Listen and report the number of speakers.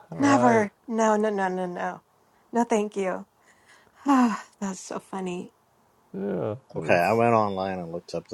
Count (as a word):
three